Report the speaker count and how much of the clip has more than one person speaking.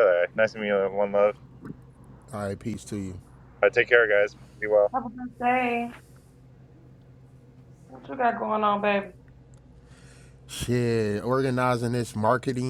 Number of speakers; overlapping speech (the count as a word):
three, no overlap